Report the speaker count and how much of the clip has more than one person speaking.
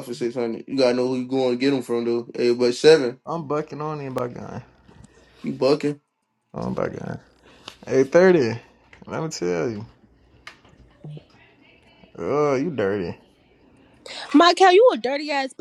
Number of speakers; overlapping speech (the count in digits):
3, no overlap